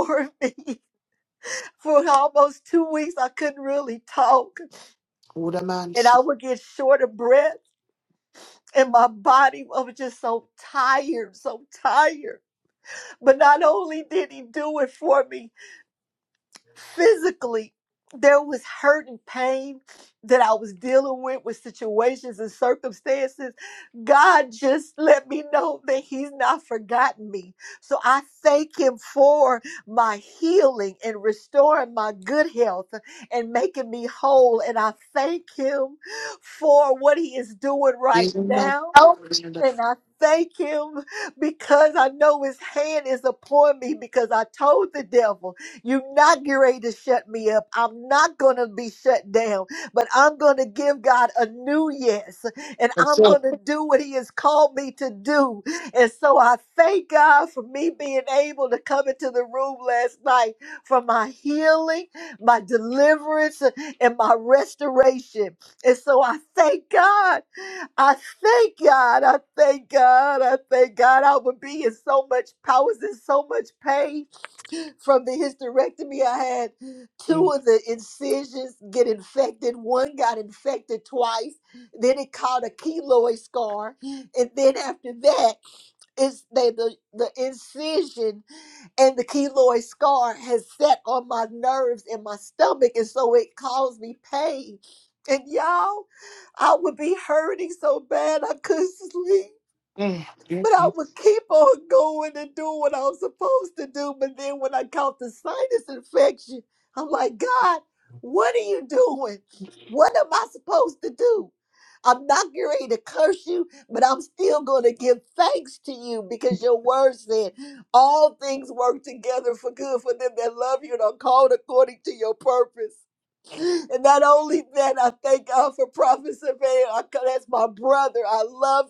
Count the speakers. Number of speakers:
2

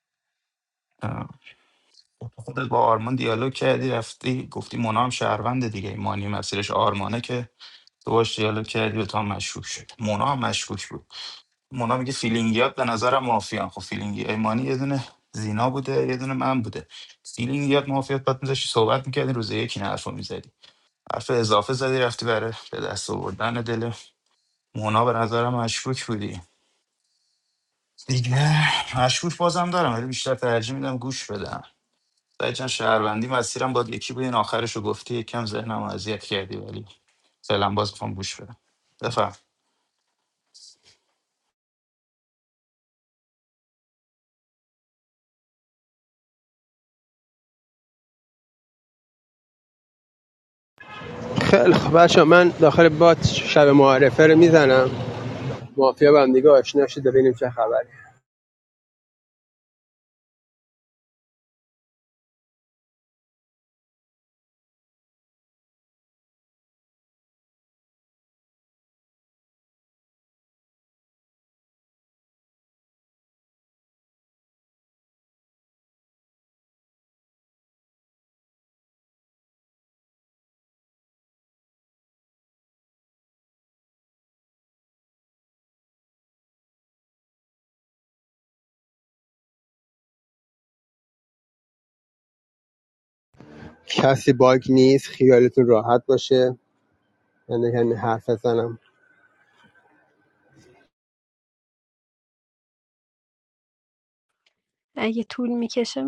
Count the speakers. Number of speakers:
3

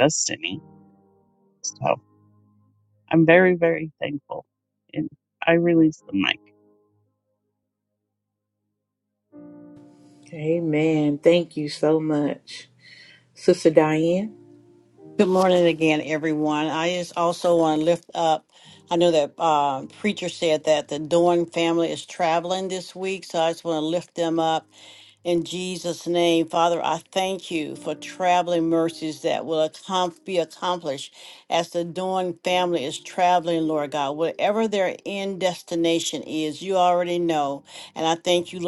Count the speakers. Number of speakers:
3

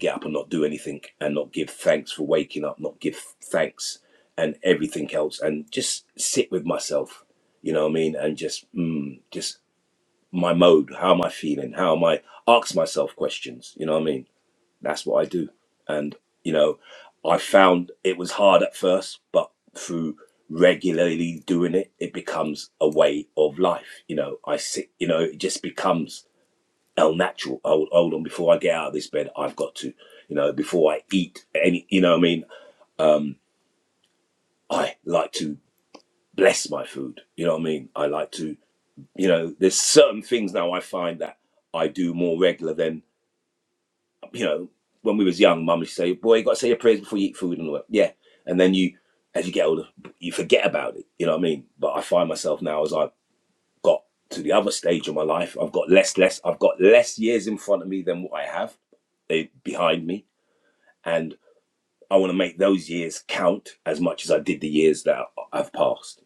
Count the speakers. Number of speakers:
1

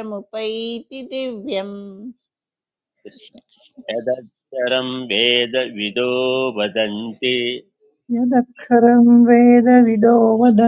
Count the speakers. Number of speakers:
3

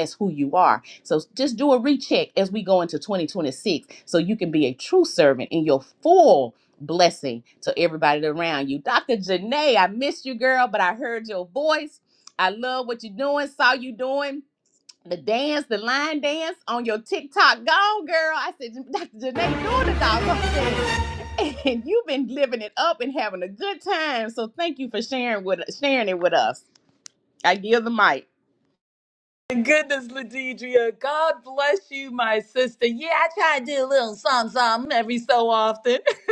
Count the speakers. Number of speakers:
2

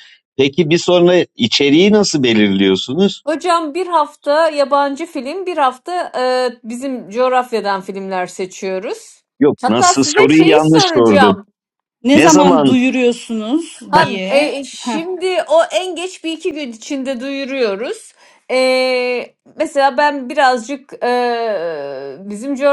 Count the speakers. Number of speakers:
3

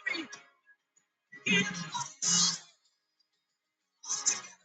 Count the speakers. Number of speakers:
0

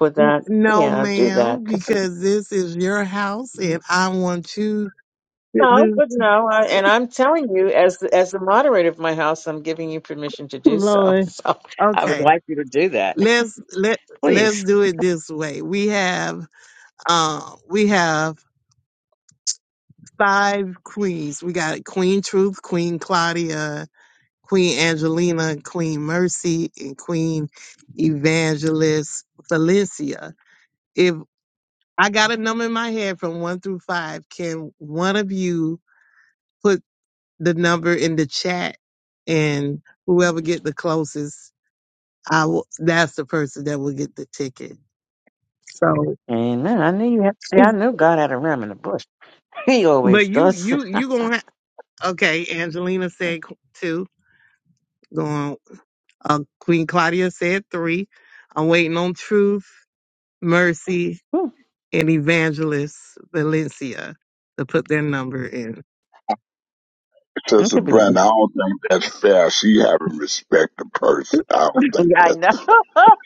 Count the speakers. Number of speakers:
3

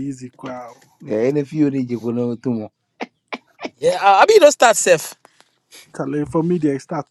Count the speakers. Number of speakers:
3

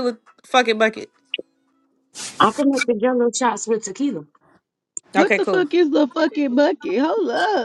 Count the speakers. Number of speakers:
3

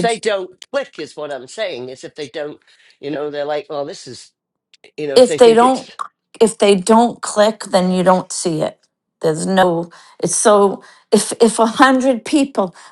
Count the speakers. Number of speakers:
2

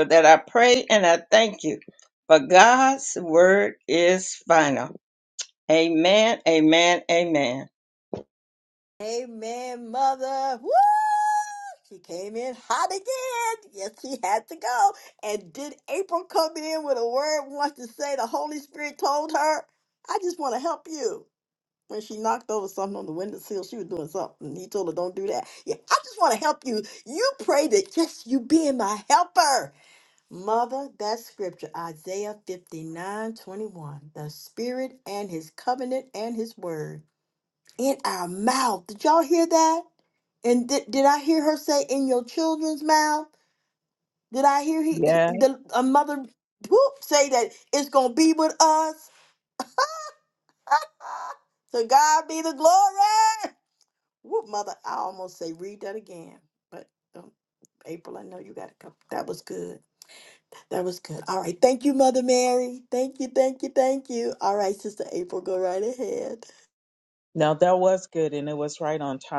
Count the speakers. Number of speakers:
3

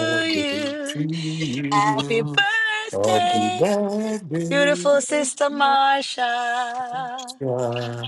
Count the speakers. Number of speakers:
2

